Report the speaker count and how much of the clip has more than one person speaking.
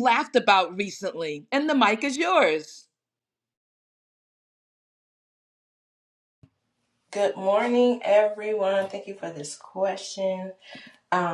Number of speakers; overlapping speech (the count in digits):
2, no overlap